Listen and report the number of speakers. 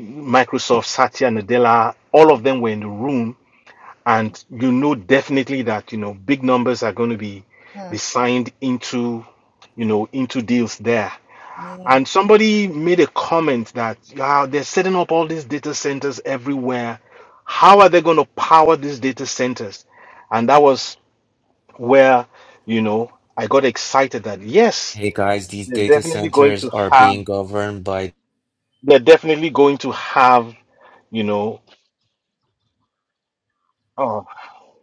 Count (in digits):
2